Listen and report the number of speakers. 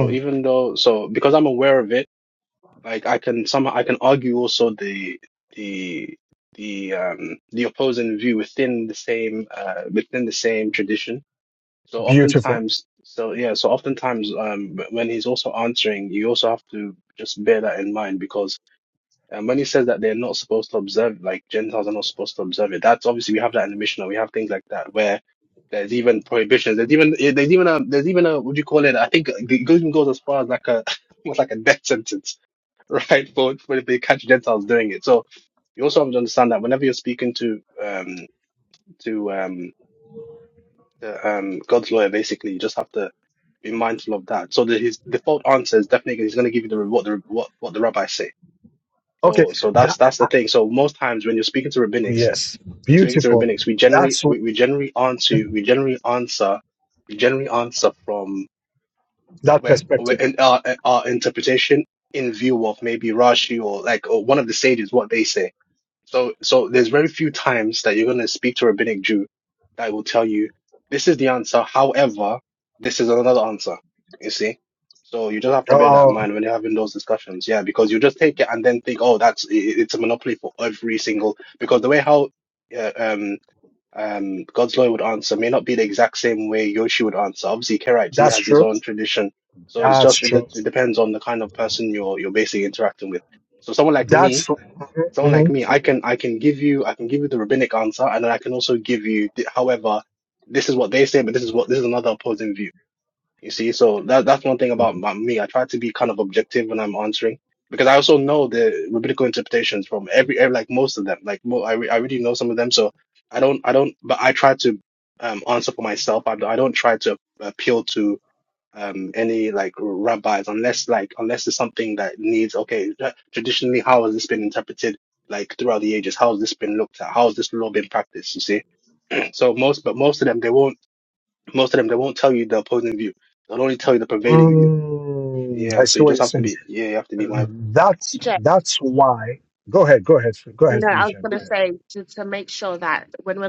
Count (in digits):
3